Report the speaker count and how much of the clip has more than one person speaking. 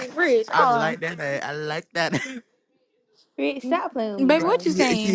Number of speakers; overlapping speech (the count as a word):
three, about 28%